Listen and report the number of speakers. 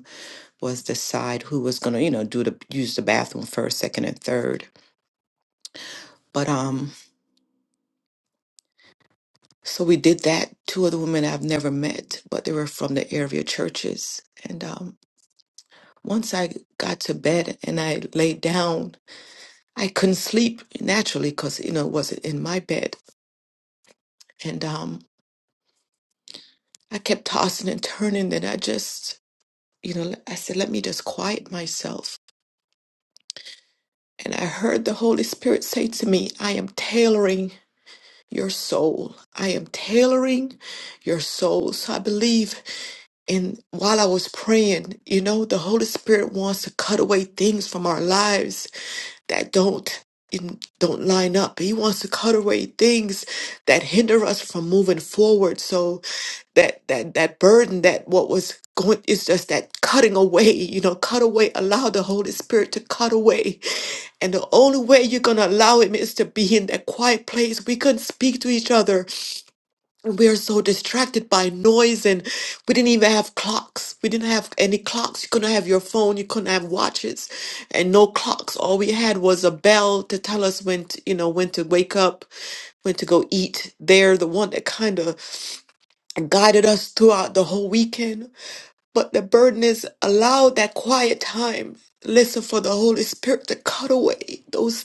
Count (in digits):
1